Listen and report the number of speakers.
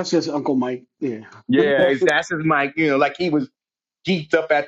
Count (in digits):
2